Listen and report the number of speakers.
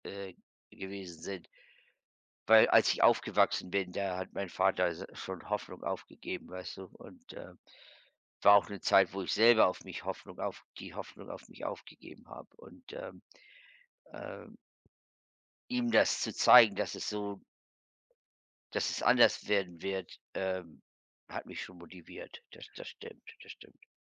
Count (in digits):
1